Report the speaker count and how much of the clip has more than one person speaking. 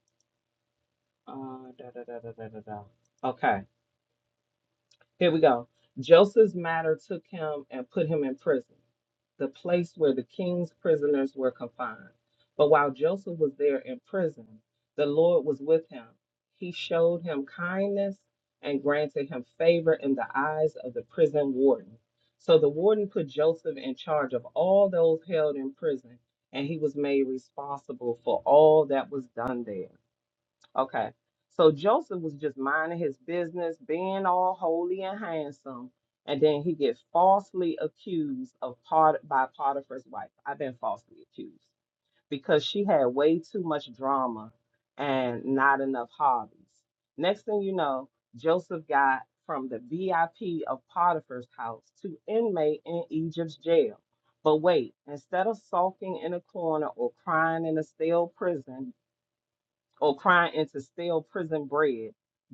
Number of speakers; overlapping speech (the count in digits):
1, no overlap